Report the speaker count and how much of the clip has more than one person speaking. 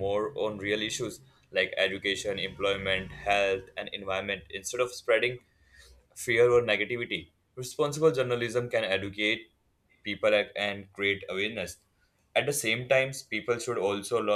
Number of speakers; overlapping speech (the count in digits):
1, no overlap